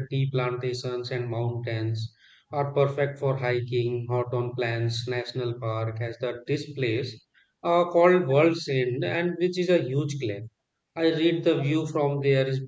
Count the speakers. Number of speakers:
1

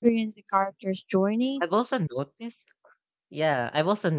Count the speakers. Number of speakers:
2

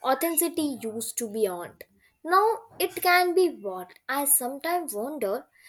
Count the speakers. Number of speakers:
1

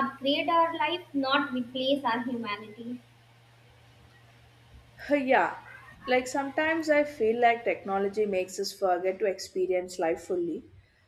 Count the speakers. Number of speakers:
2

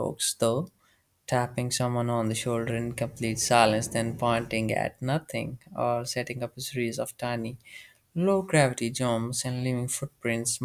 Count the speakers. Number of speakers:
1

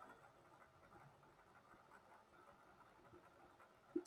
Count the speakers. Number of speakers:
0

